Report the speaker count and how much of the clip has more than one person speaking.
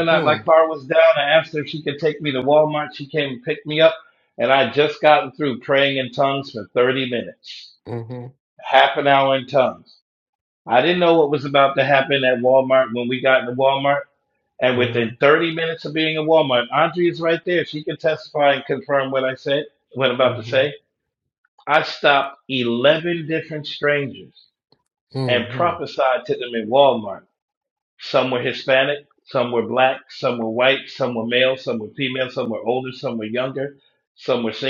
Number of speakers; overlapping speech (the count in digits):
2, about 5%